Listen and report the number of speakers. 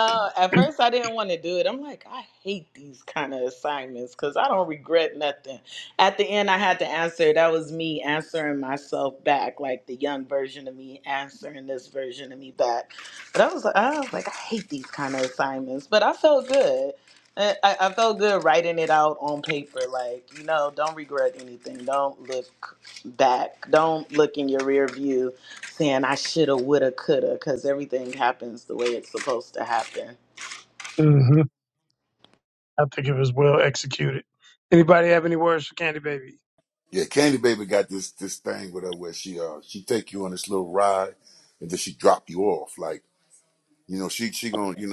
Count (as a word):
three